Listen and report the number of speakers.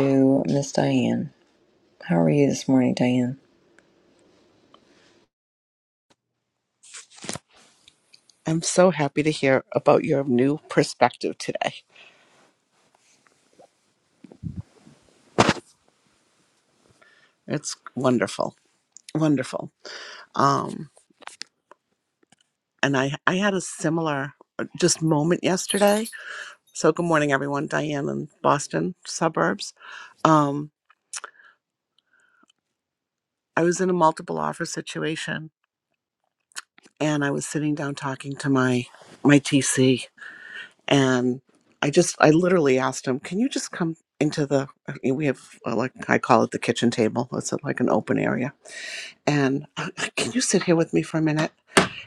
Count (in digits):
2